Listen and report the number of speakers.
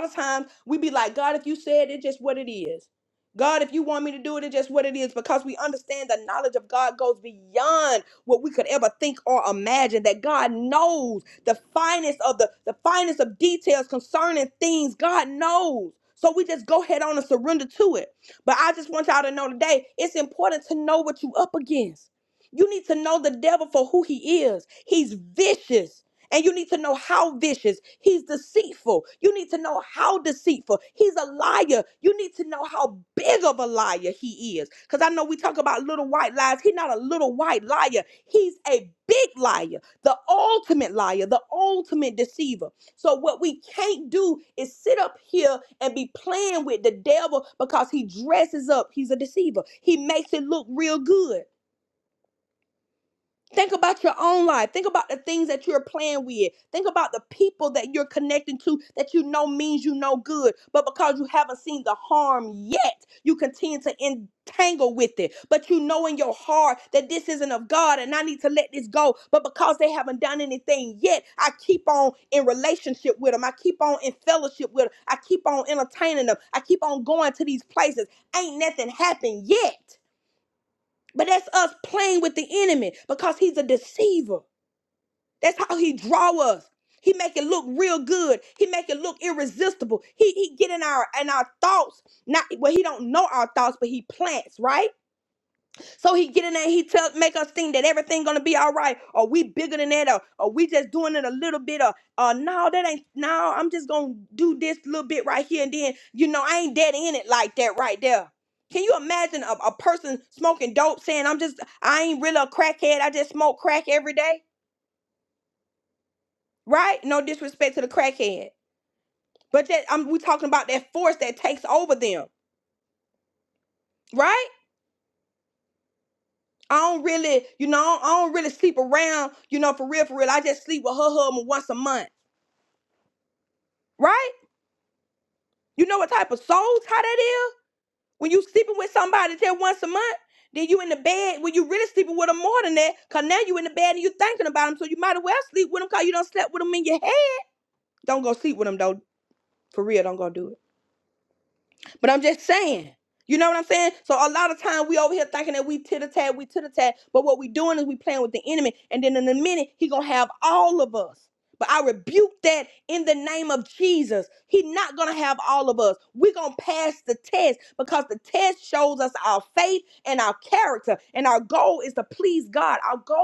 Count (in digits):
1